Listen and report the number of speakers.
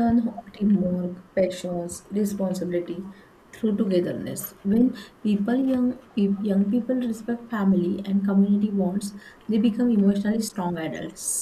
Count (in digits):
1